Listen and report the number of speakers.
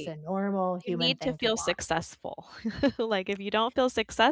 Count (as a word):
two